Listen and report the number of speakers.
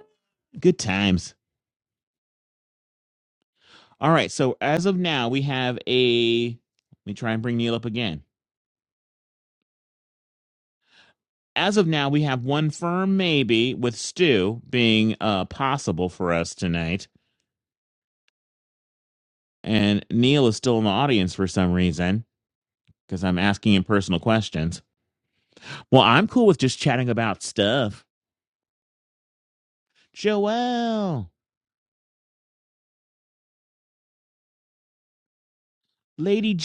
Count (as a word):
one